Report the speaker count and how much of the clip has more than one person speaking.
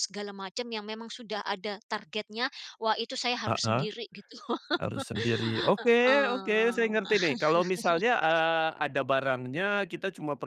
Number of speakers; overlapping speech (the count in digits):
2, about 13%